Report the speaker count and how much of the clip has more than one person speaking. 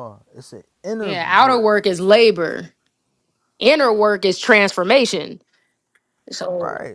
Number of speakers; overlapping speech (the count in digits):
2, about 12%